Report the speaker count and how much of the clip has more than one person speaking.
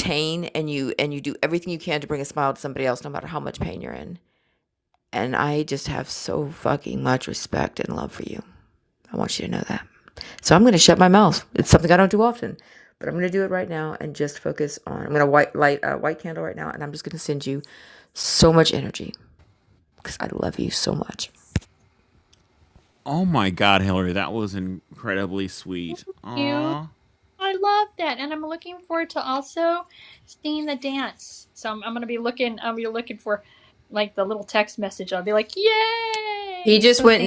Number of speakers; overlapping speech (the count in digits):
3, about 2%